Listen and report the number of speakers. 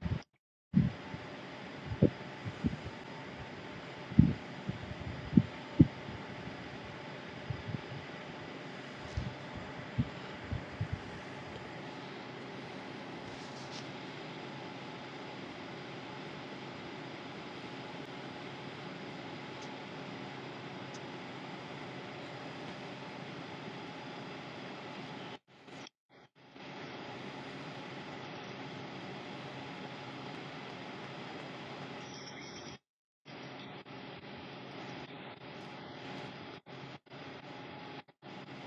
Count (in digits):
0